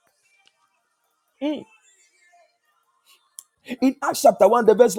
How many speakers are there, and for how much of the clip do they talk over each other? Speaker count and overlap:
1, no overlap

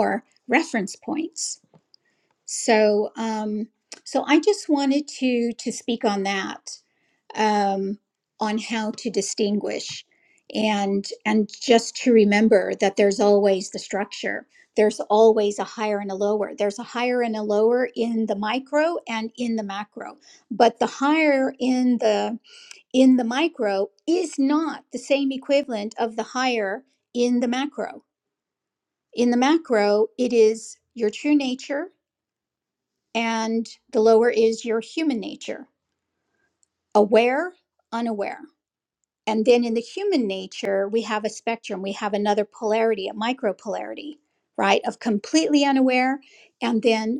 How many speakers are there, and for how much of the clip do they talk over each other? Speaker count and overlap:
1, no overlap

